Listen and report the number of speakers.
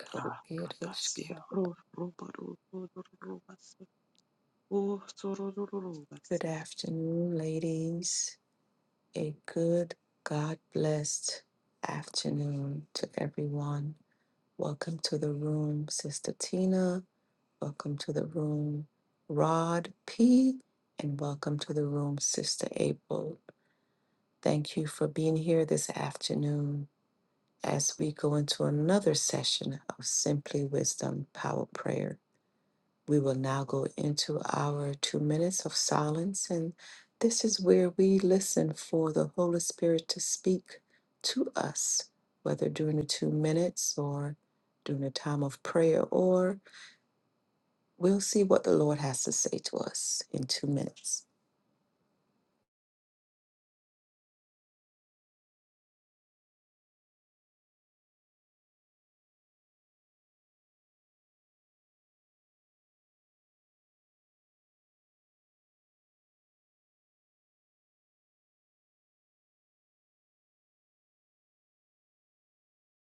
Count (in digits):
2